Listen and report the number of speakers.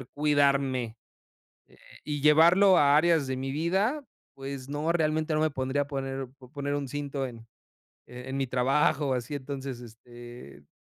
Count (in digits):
1